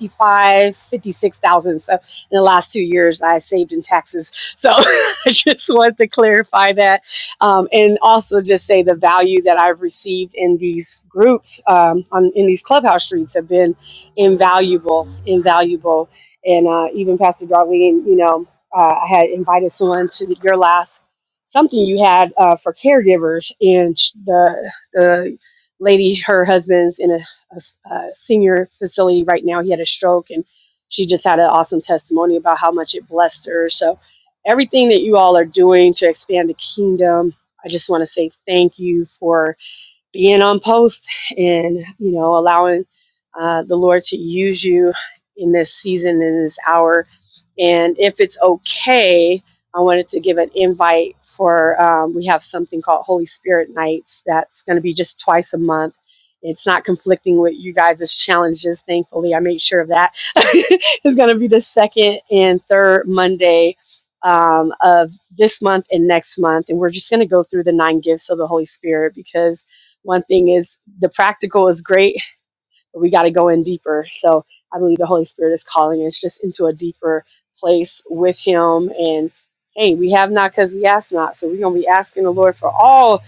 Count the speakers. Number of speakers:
1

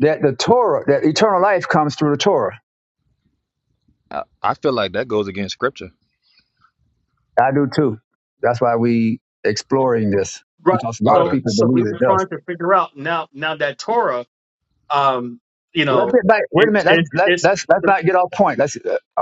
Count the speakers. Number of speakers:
3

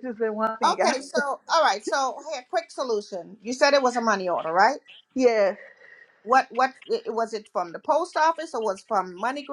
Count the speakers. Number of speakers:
2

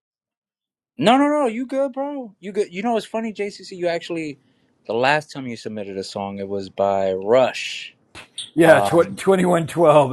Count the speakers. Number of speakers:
2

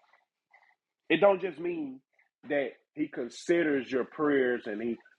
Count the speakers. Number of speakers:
1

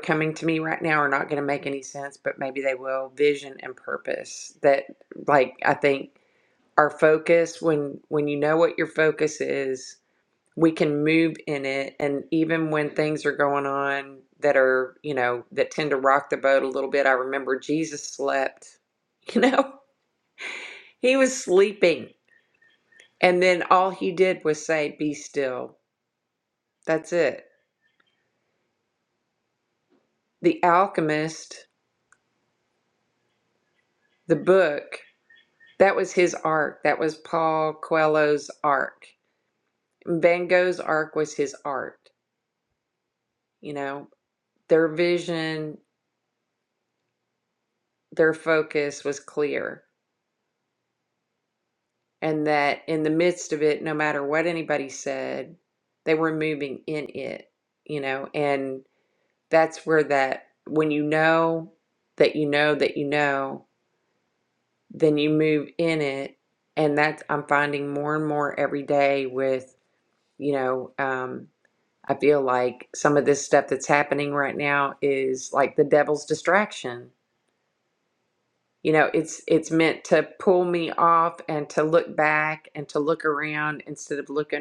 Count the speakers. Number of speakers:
1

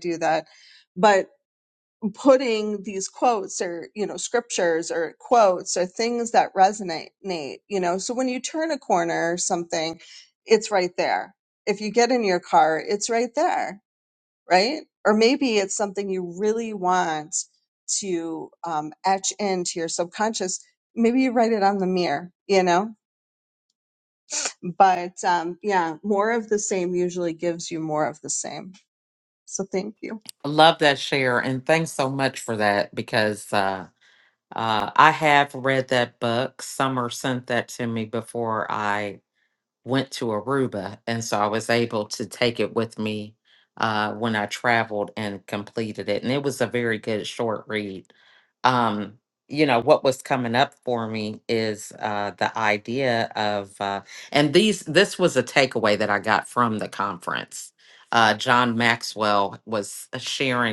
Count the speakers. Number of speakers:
2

